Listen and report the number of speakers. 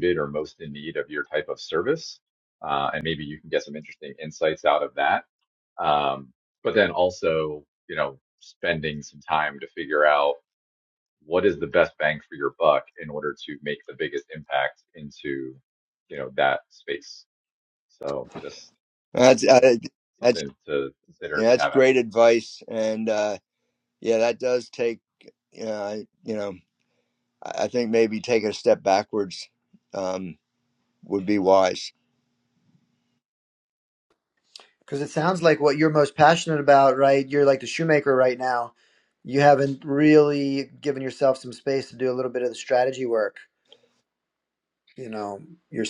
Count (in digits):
3